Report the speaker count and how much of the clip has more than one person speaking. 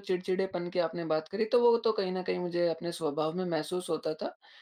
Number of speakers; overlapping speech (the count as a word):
one, no overlap